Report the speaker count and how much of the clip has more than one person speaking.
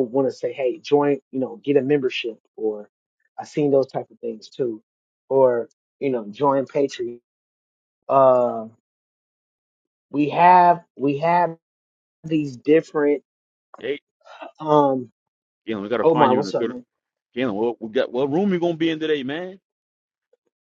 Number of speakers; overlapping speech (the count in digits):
2, about 4%